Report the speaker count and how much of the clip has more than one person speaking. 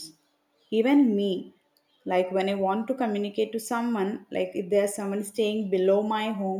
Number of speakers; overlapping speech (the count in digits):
1, no overlap